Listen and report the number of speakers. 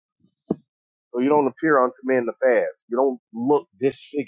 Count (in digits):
1